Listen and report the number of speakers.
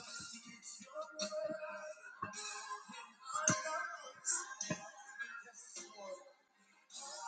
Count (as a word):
zero